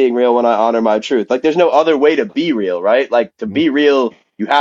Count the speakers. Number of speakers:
one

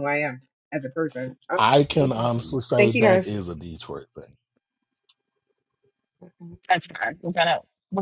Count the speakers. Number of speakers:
three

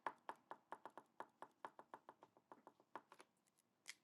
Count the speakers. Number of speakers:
zero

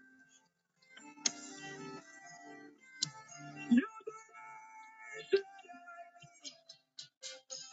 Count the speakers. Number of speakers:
zero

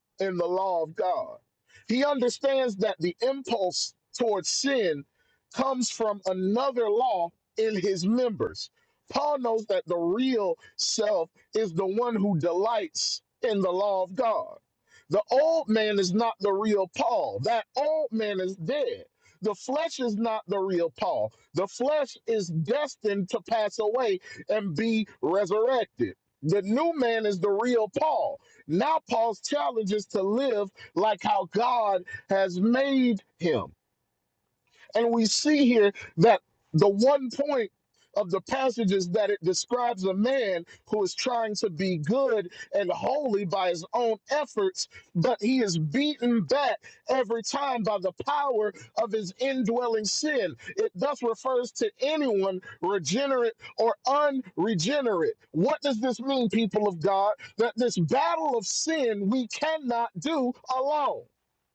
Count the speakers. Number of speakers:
one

